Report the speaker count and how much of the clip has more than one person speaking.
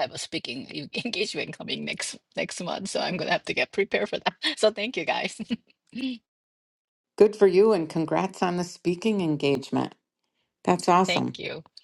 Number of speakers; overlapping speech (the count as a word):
two, about 2%